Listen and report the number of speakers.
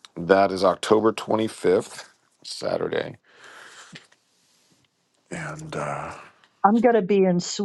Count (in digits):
2